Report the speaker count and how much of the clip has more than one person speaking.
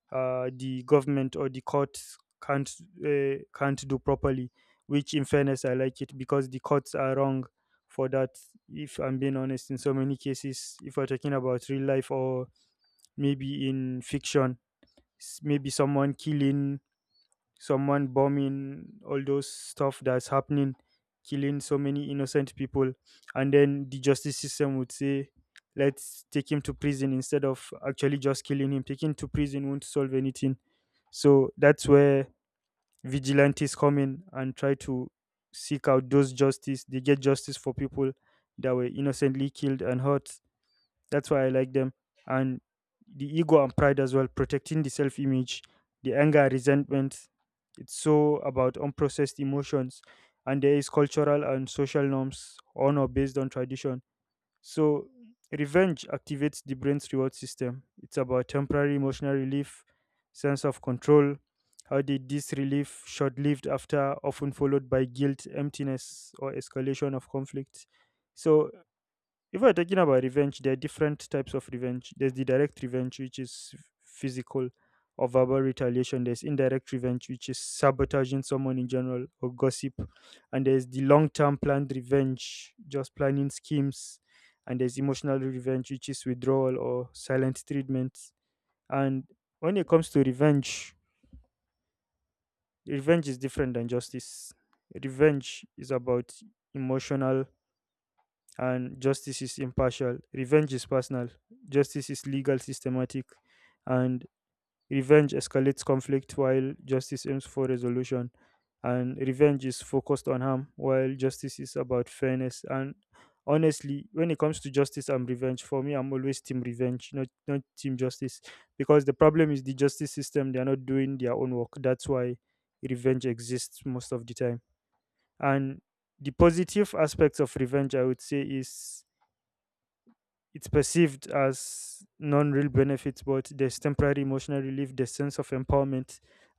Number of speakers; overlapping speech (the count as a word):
one, no overlap